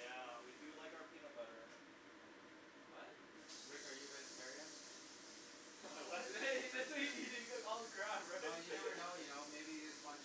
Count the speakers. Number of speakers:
three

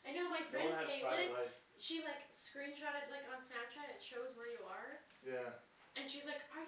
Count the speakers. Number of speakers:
two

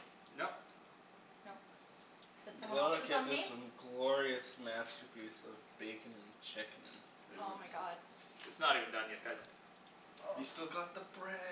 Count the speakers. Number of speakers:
four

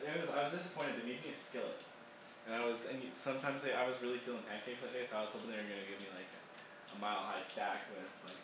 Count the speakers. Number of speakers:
one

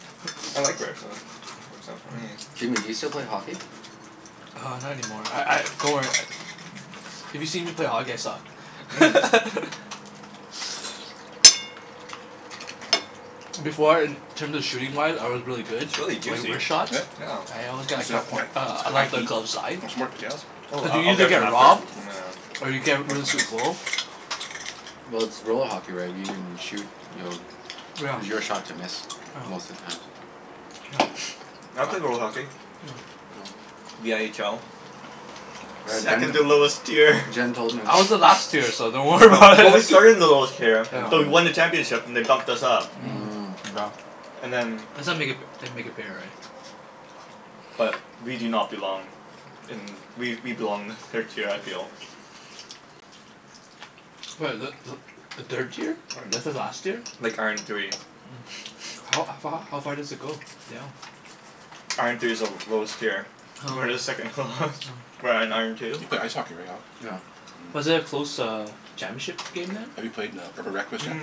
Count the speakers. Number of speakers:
four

